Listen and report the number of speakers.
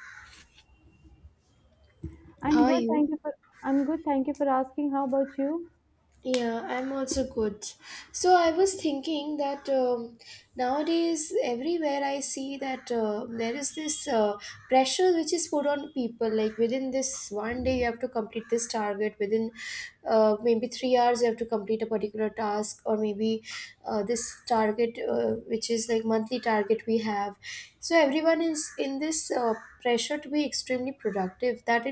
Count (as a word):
two